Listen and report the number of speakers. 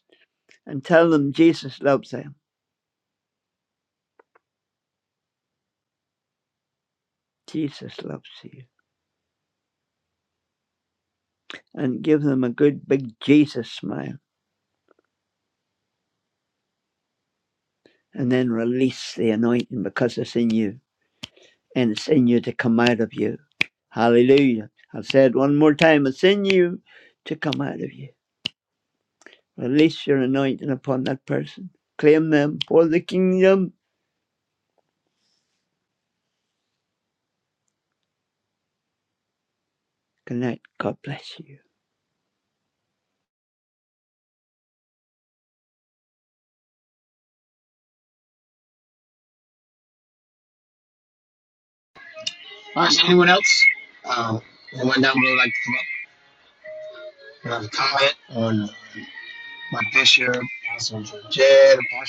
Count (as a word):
two